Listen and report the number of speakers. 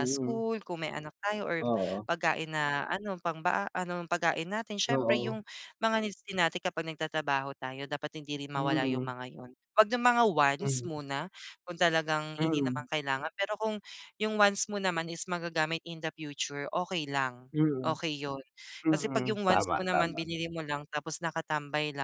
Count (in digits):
2